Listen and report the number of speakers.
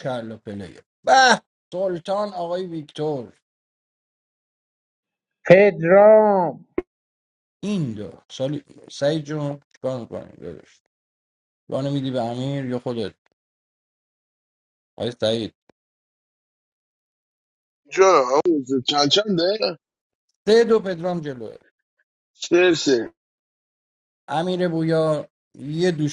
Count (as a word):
three